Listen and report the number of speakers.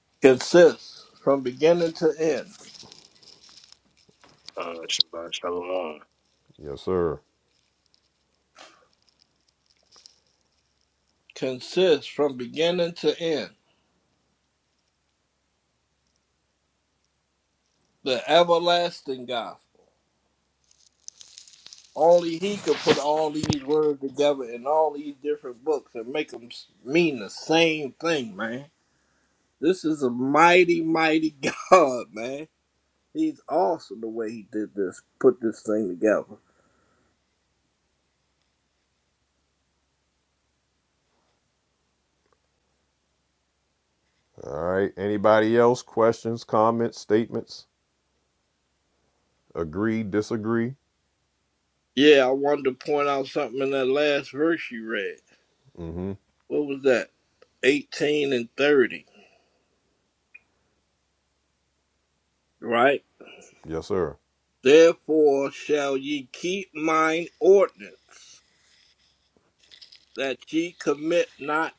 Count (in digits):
3